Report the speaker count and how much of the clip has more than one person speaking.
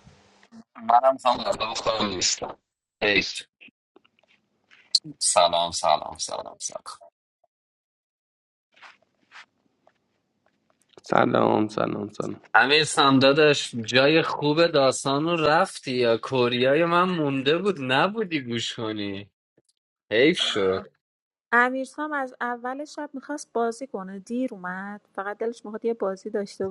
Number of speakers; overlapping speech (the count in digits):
3, no overlap